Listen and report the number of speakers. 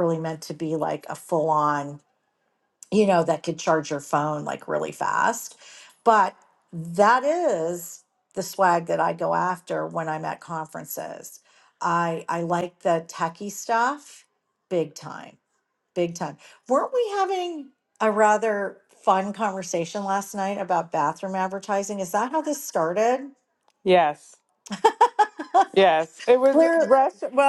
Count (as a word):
two